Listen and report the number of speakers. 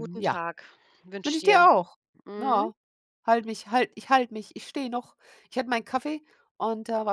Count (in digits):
2